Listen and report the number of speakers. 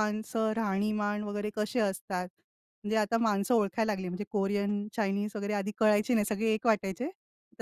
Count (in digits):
1